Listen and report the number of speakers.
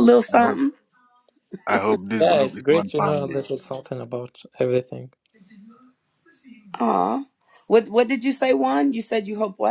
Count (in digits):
3